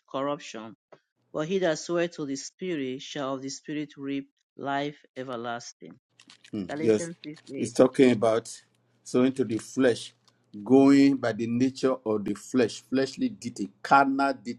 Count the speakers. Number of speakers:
two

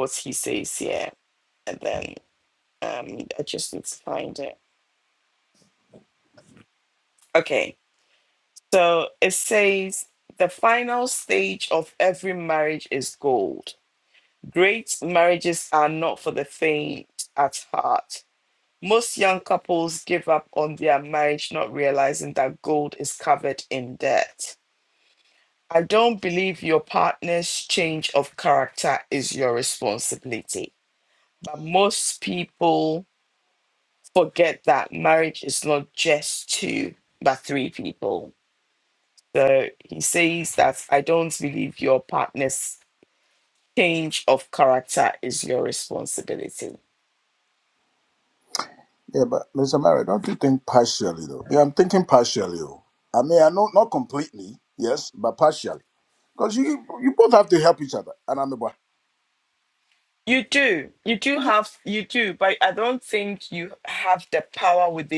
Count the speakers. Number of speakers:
two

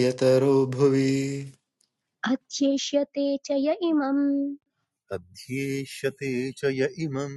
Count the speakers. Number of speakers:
three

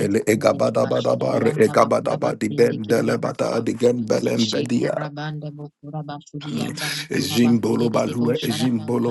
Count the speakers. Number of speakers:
two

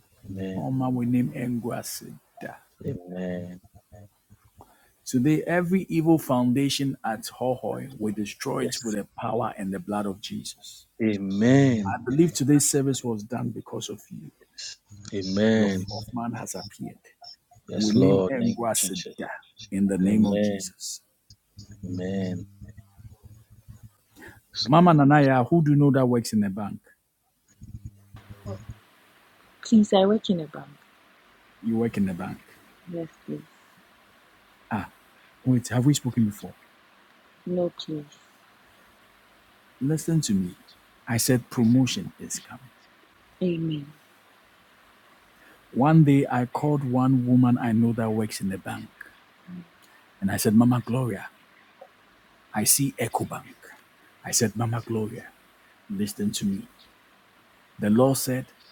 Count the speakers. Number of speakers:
three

